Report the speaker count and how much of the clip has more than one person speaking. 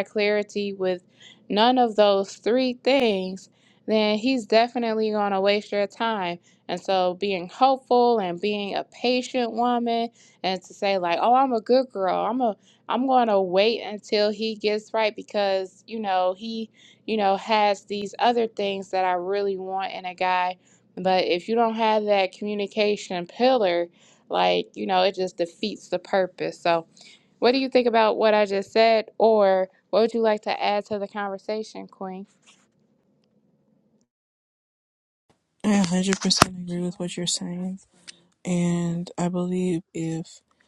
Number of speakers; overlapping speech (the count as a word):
two, no overlap